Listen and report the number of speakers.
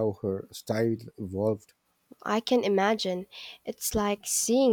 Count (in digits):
2